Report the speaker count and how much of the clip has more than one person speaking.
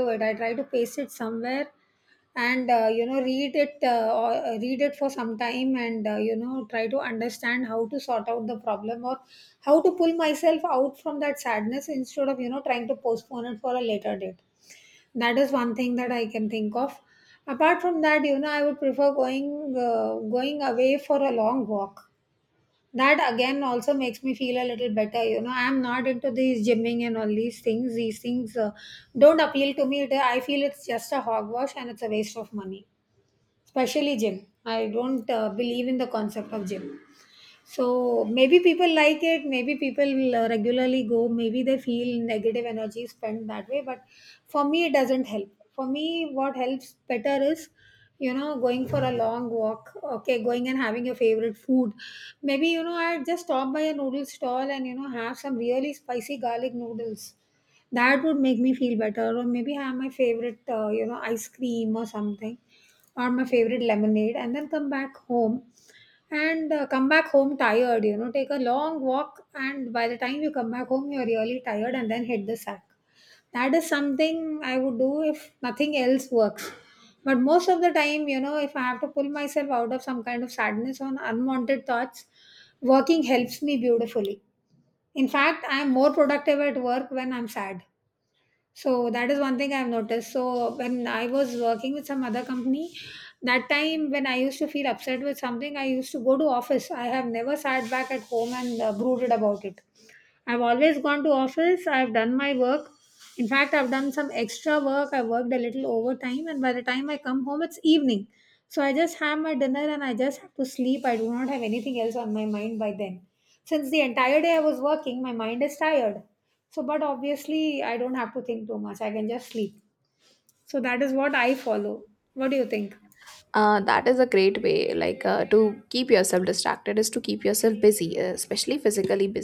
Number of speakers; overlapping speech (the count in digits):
2, no overlap